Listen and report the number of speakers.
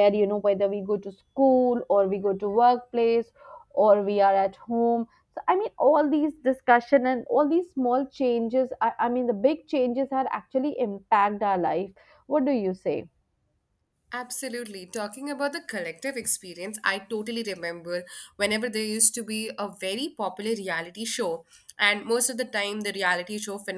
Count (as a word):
two